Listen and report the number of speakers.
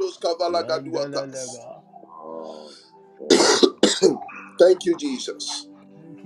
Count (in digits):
3